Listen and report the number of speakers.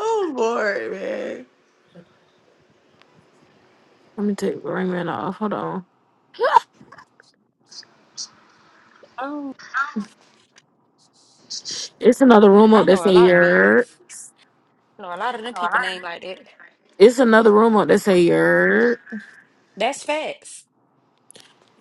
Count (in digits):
3